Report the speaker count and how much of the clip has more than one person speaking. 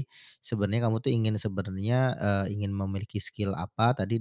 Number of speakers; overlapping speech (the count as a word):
one, no overlap